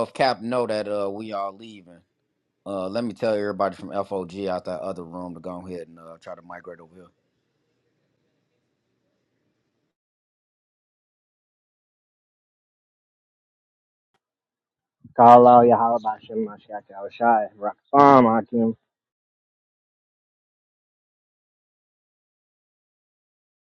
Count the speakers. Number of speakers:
2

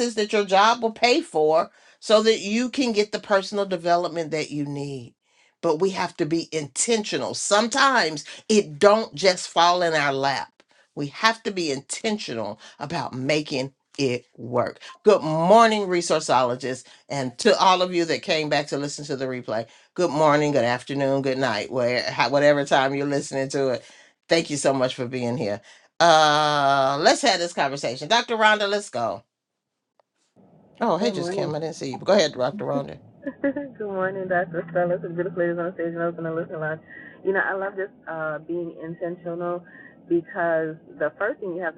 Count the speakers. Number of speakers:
2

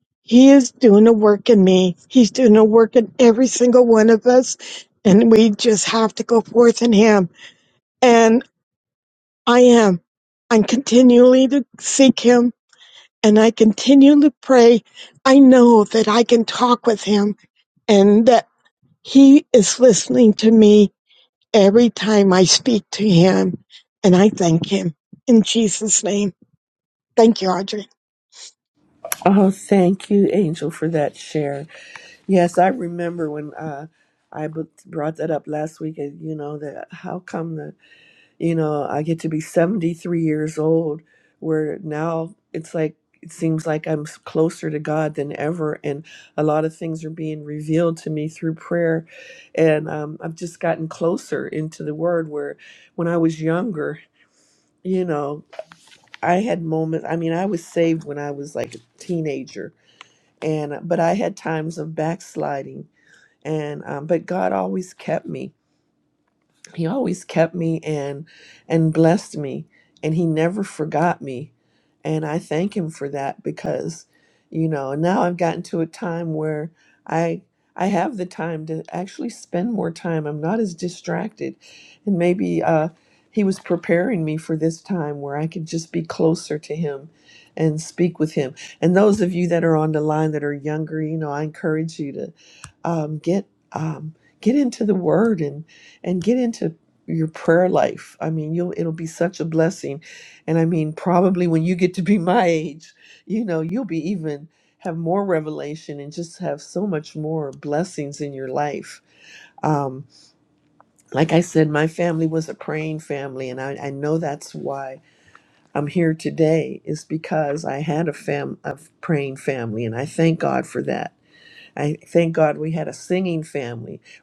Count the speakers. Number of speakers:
2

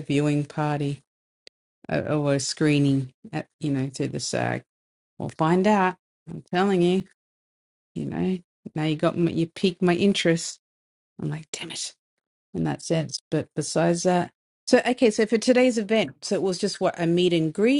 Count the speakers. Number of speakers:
1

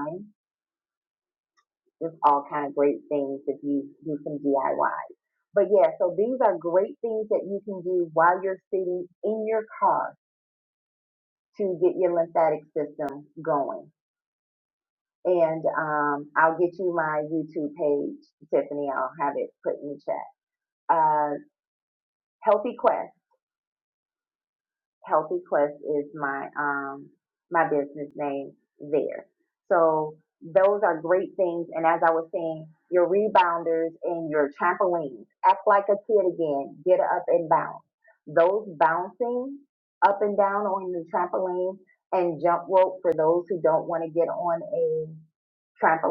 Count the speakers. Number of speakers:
1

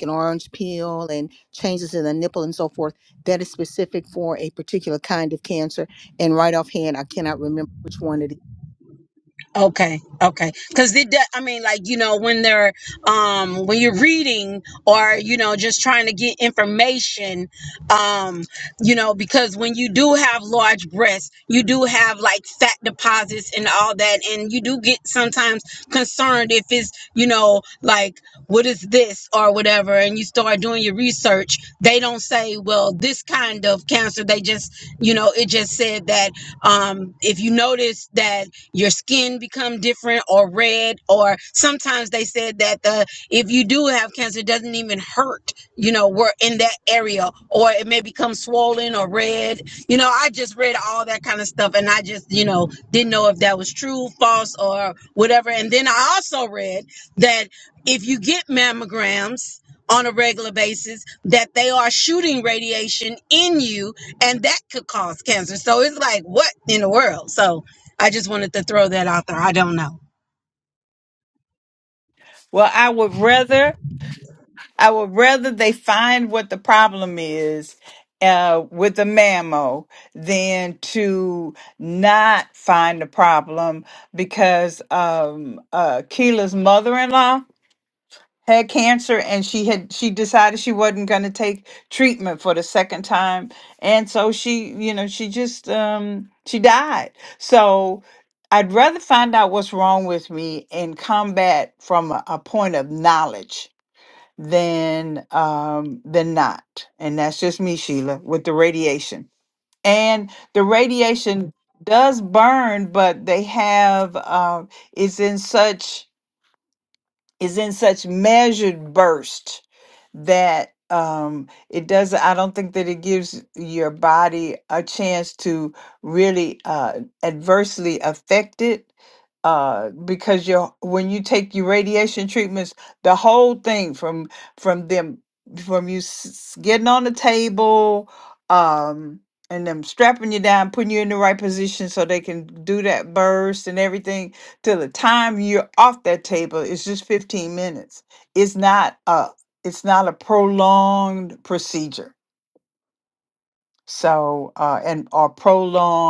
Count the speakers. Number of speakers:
3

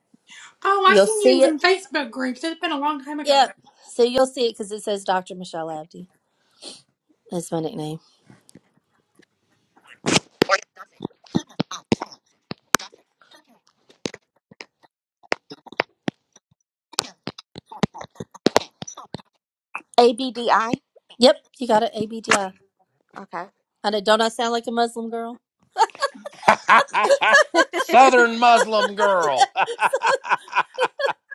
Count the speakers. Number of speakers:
4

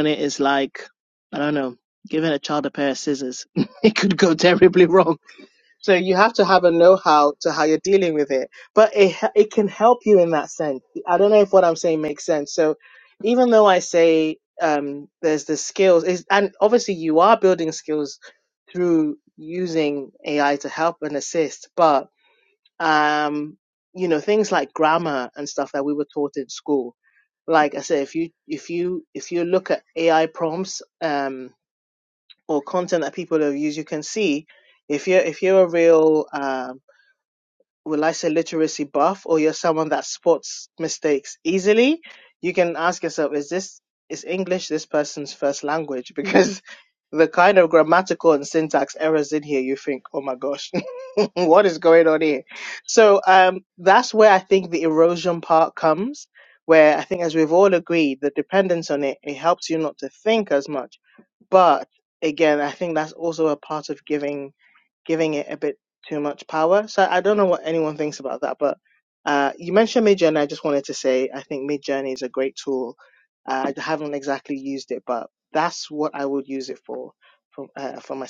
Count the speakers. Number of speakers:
1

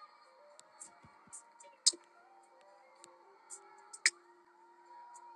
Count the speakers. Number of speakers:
0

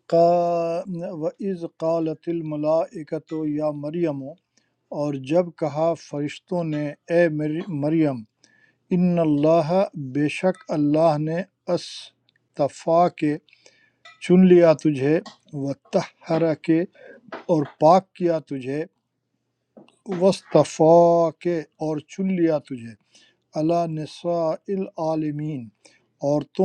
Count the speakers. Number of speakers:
1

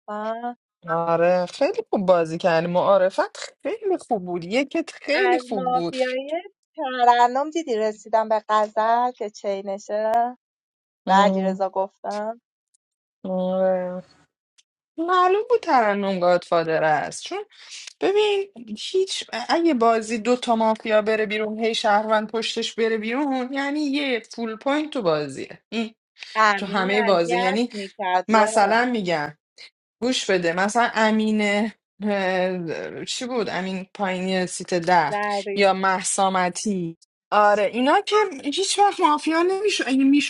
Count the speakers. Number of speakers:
2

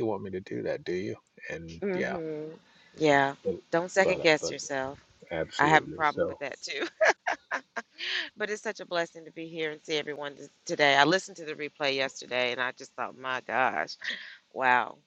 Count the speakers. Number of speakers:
2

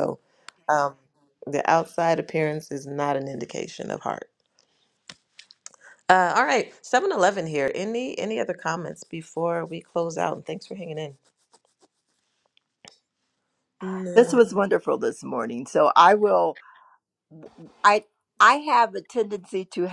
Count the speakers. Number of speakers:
2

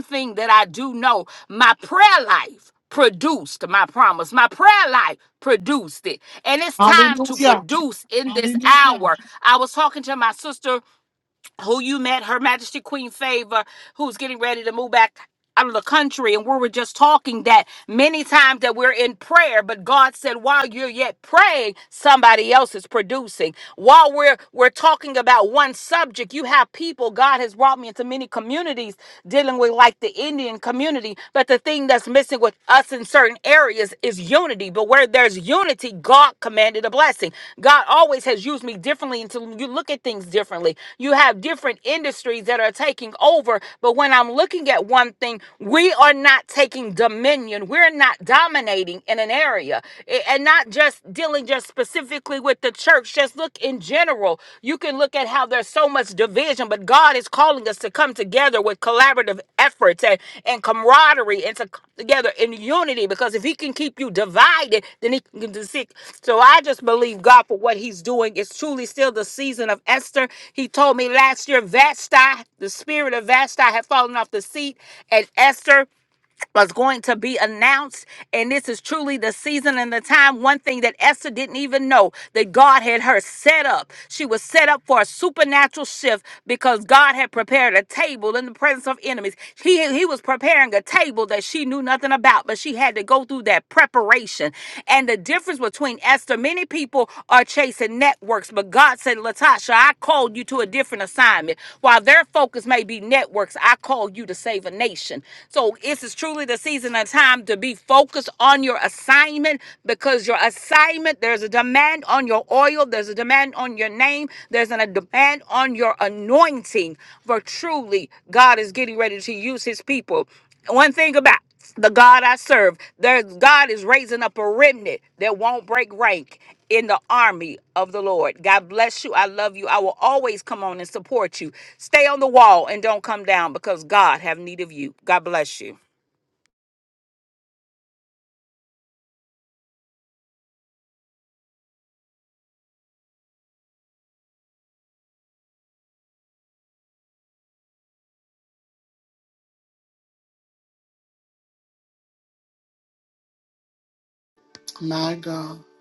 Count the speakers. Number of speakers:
2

